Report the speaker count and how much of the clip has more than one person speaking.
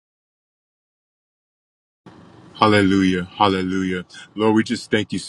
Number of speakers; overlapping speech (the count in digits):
1, no overlap